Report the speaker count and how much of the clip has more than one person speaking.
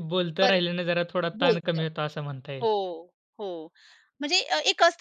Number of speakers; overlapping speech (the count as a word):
two, about 14%